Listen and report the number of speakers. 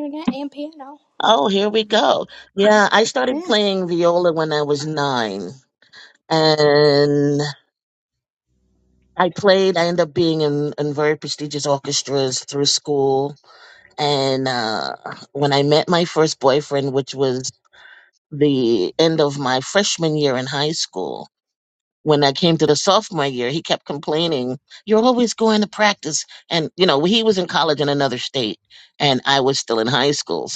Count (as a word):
two